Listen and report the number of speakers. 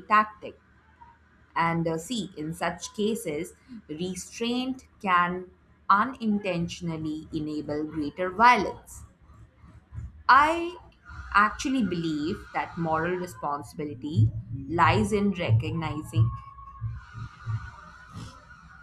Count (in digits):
1